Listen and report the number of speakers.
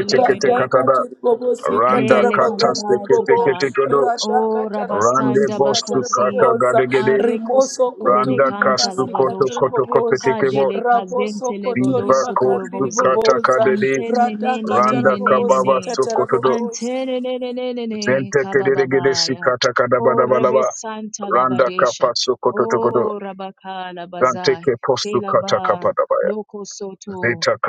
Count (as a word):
three